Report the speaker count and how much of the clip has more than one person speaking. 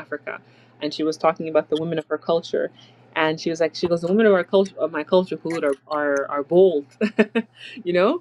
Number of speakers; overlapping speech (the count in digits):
1, no overlap